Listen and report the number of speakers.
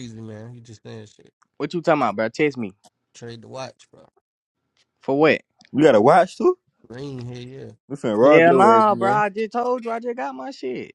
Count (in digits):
3